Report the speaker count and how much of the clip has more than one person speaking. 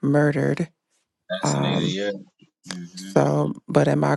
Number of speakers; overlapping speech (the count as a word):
two, about 16%